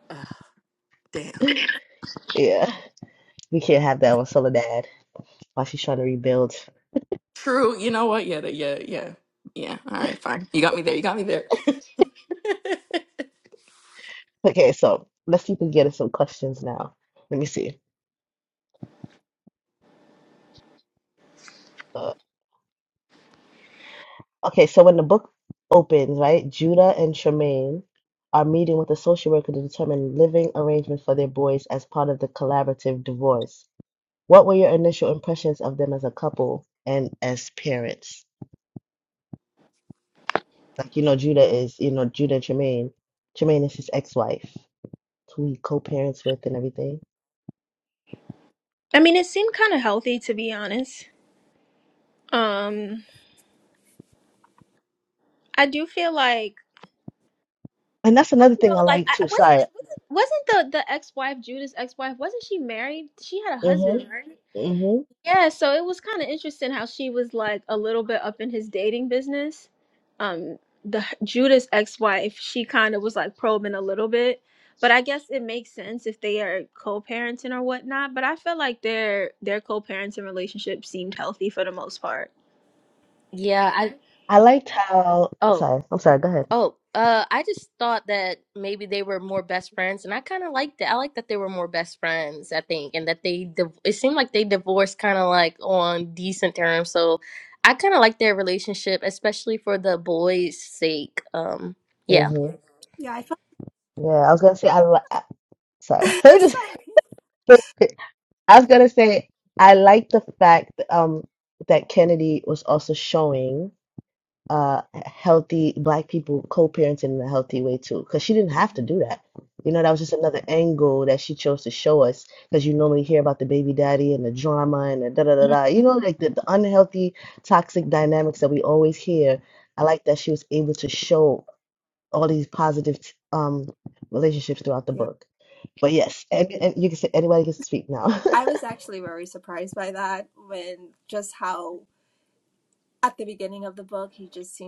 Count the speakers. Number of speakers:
5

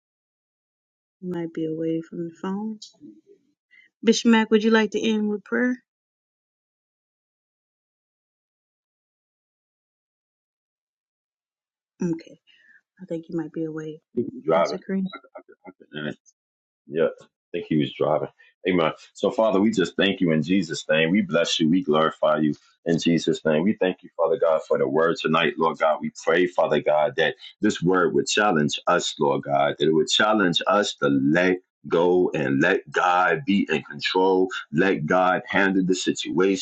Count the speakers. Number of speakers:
2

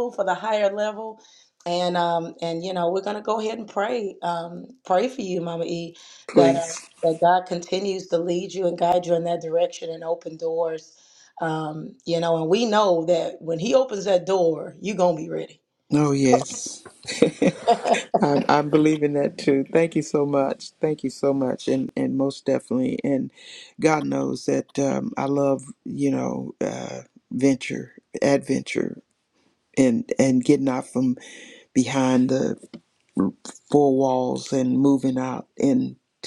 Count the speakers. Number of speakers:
2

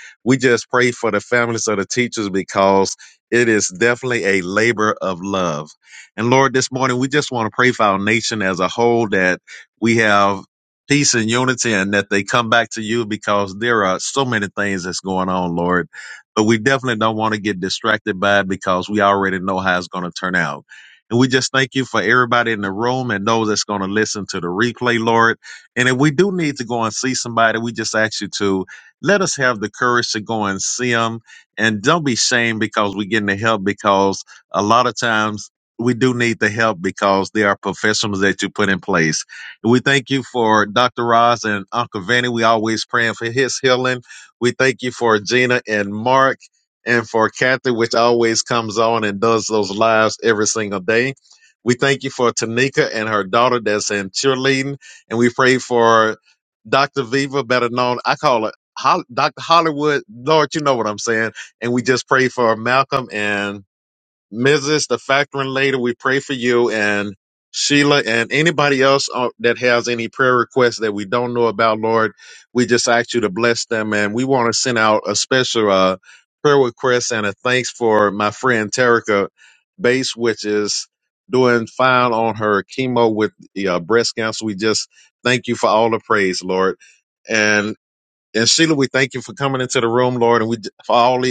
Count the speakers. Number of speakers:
1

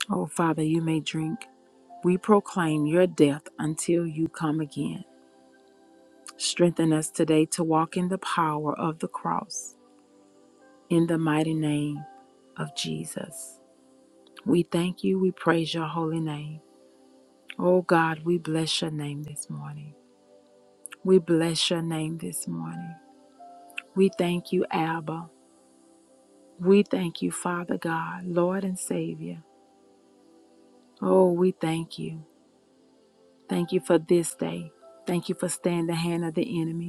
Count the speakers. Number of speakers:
1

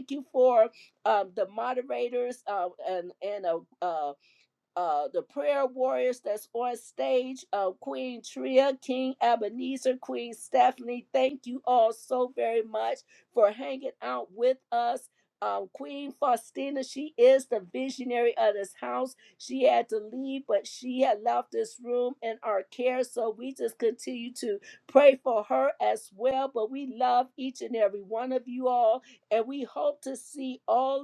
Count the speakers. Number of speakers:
1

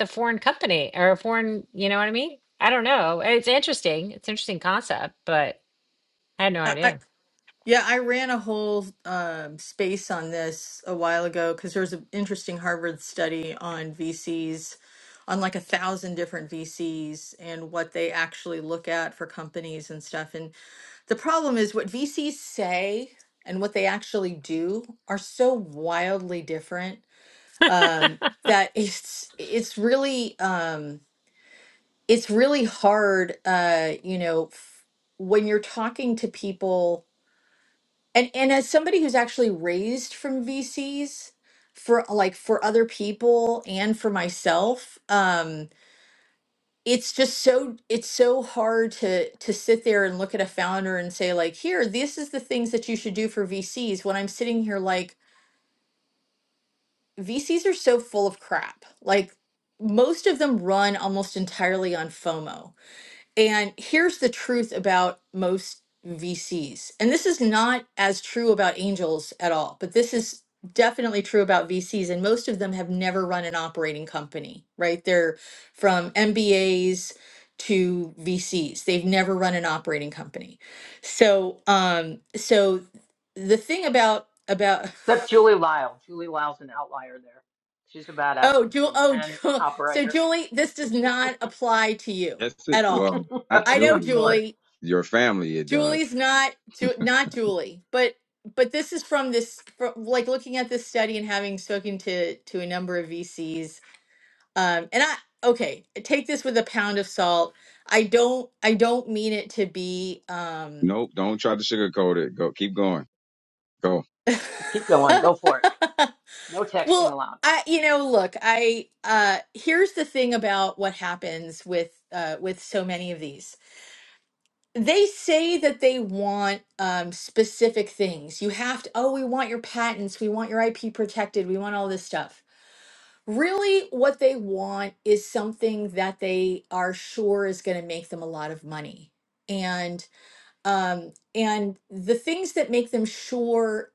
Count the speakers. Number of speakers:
4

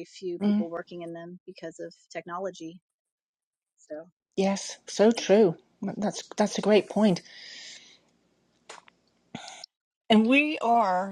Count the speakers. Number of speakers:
3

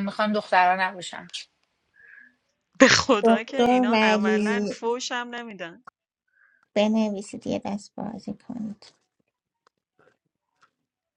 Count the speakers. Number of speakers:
3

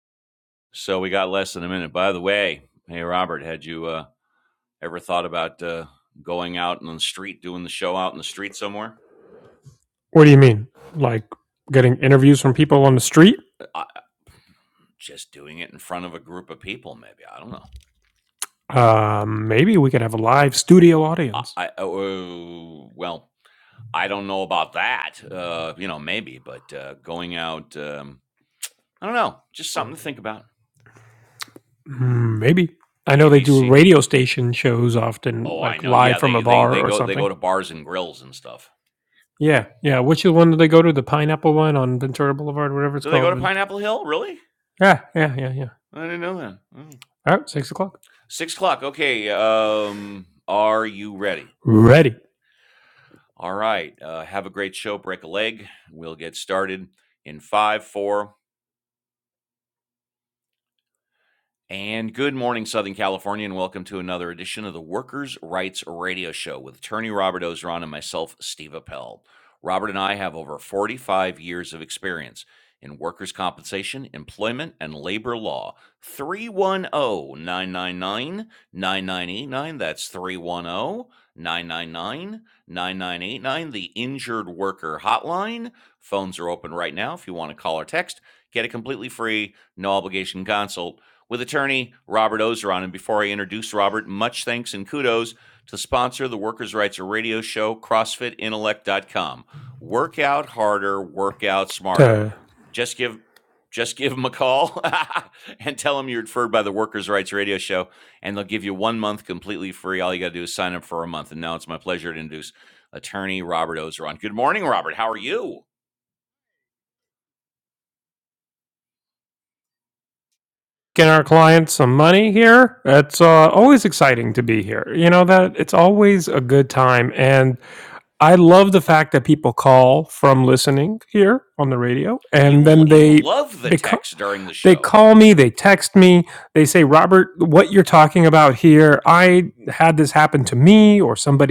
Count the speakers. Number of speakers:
2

